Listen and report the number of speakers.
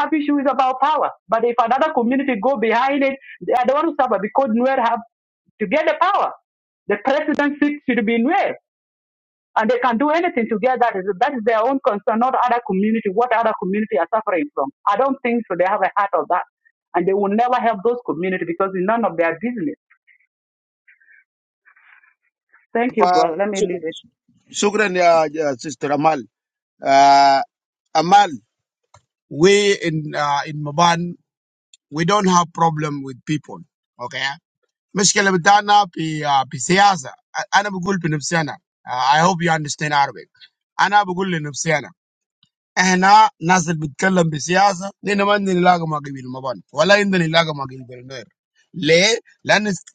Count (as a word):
two